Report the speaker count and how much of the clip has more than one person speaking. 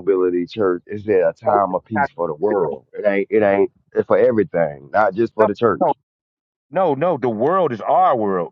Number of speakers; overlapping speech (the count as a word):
two, no overlap